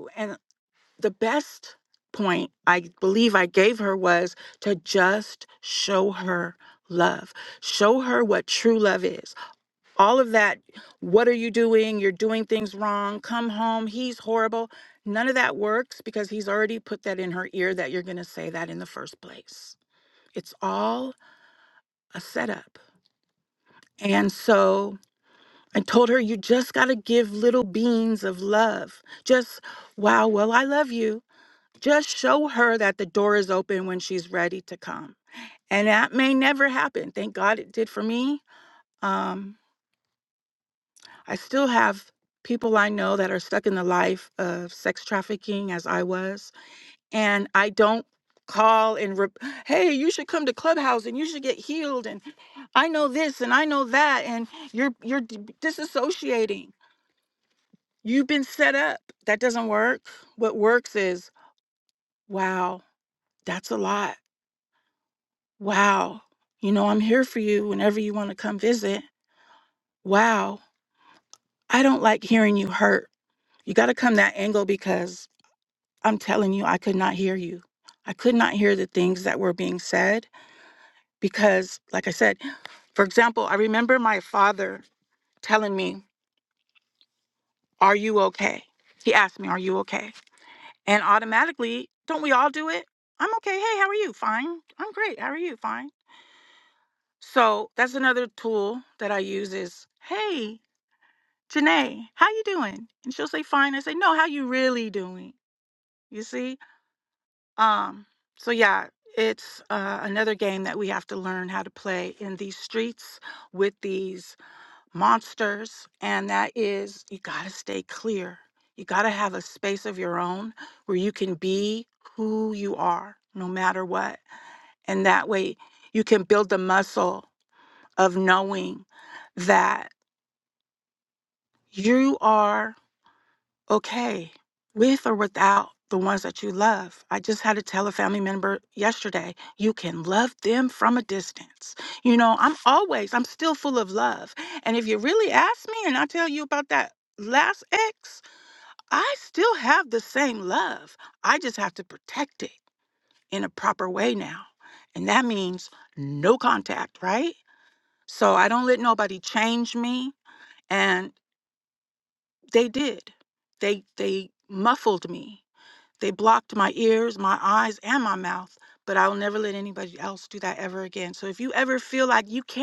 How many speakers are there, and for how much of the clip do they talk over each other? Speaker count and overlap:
1, no overlap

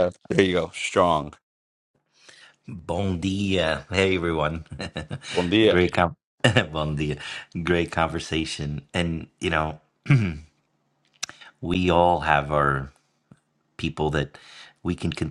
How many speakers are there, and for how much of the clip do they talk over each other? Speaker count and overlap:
2, about 1%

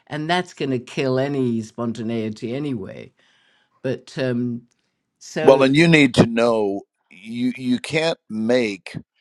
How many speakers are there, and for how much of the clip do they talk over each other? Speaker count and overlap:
2, about 3%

